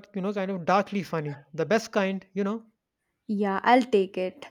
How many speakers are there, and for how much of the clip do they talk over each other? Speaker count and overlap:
2, no overlap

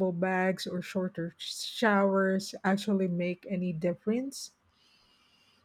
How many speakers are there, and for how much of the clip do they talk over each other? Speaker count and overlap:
1, no overlap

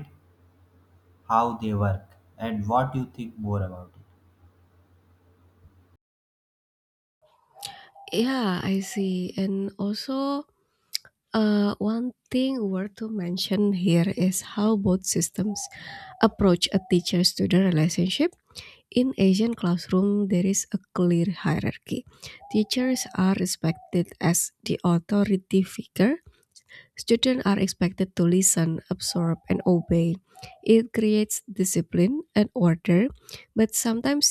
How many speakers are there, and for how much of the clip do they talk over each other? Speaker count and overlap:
2, no overlap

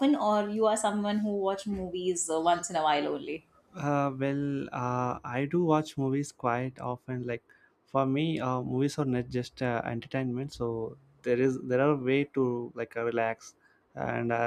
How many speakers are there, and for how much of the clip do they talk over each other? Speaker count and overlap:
2, no overlap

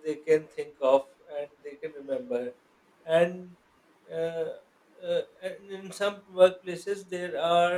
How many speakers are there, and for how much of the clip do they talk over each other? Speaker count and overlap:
1, no overlap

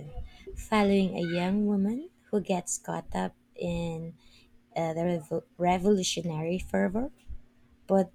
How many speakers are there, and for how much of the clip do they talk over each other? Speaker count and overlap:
1, no overlap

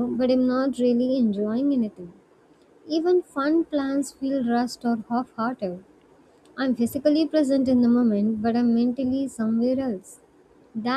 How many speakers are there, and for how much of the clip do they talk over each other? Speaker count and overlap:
1, no overlap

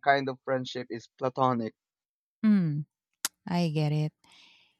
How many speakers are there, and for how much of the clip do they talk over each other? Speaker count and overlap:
2, no overlap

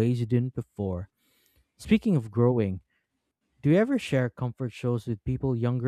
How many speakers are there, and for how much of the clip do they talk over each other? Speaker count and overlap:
1, no overlap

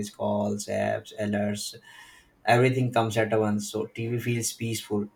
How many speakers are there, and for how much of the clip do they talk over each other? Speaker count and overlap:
1, no overlap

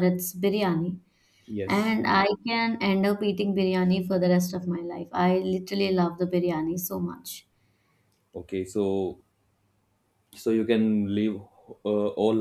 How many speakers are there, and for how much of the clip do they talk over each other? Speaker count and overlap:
2, about 1%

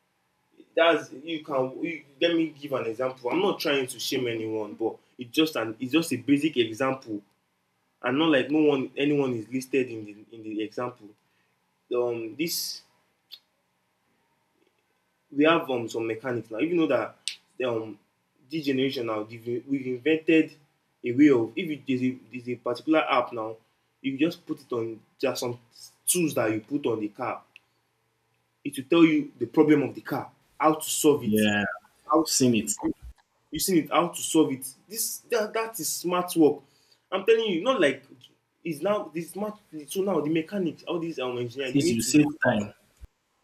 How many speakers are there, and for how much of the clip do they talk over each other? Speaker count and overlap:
2, about 2%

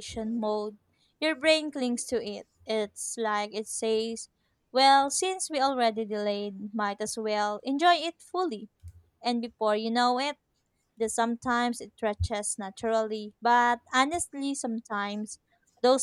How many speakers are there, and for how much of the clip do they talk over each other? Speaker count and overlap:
1, no overlap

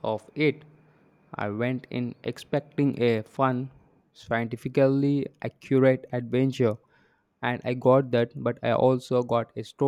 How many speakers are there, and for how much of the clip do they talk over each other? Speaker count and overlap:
1, no overlap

